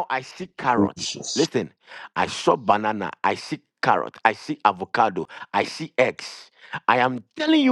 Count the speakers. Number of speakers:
1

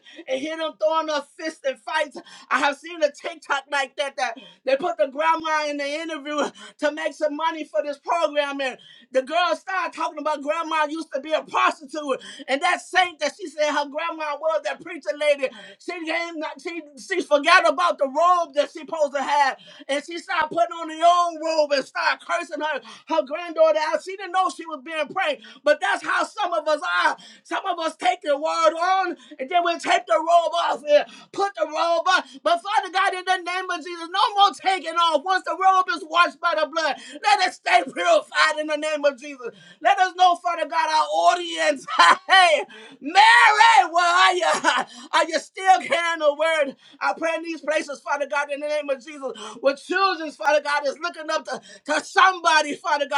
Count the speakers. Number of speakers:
1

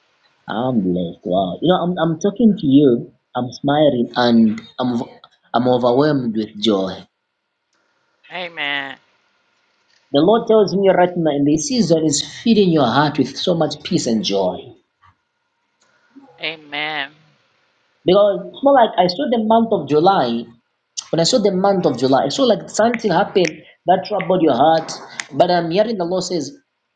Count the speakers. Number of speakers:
2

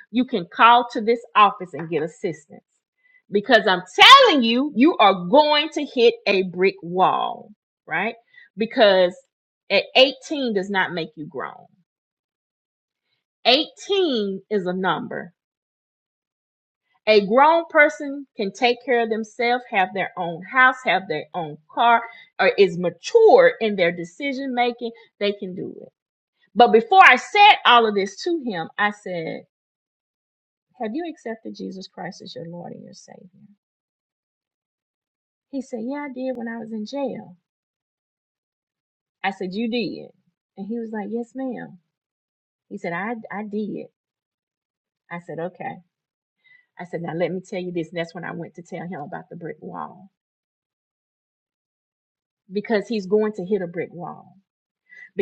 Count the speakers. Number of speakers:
1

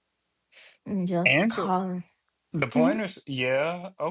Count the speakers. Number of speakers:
2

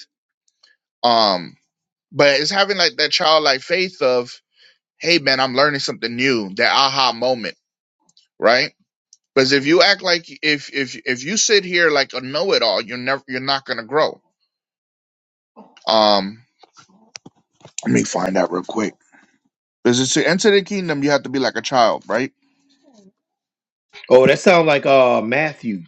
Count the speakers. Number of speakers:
2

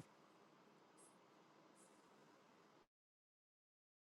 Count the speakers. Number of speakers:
0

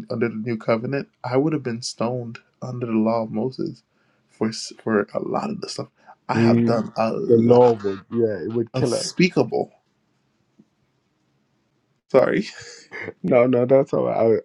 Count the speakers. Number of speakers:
2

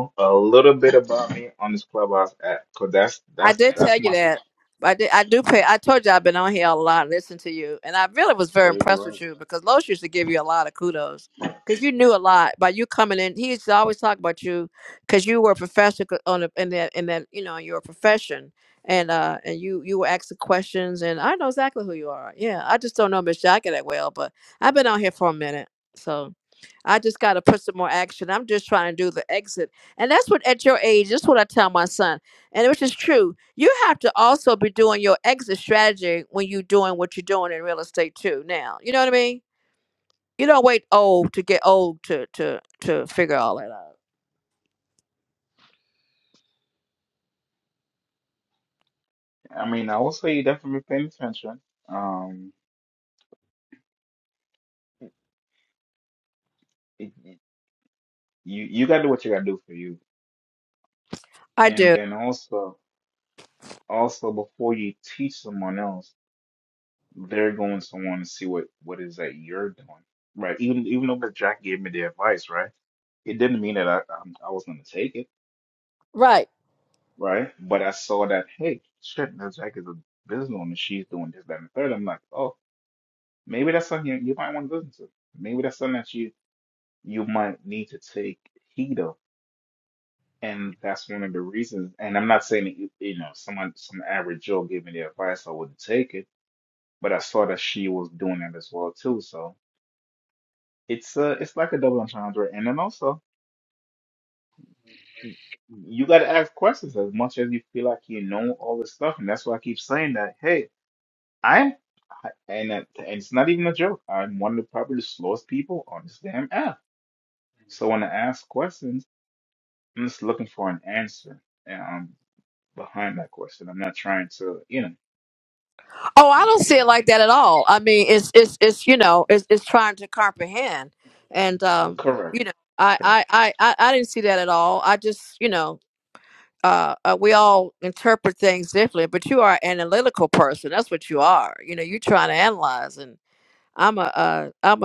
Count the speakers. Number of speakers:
2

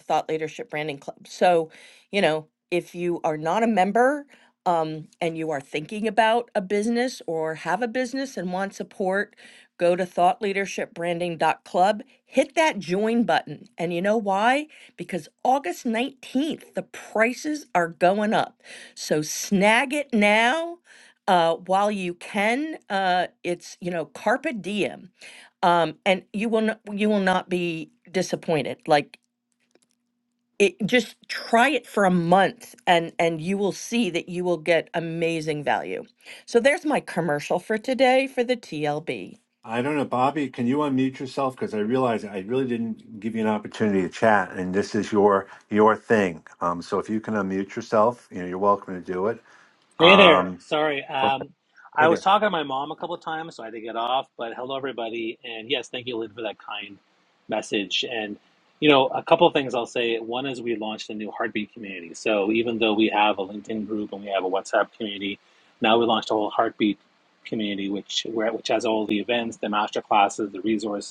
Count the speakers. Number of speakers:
3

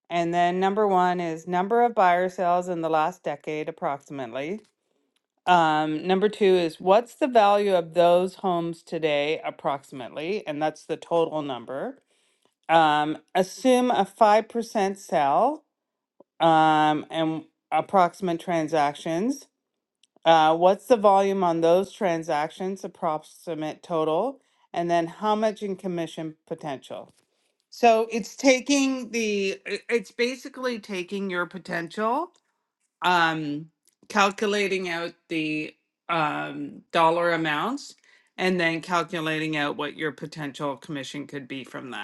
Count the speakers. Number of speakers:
1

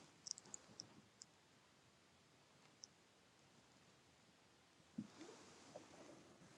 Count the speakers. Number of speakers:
0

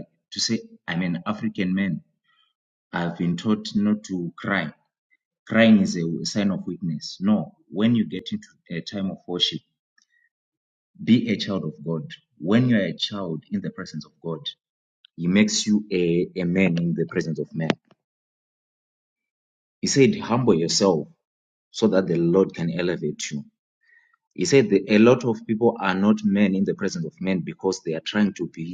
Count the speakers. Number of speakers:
1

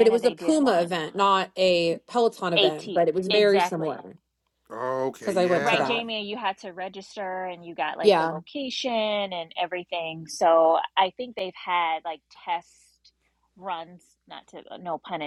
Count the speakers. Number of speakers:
3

